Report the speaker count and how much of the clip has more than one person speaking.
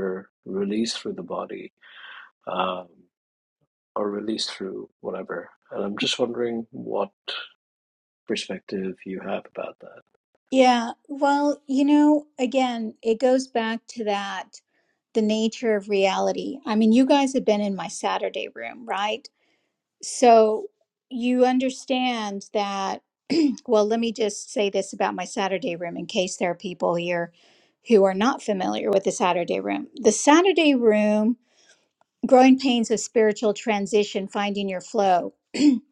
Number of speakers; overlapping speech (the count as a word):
two, no overlap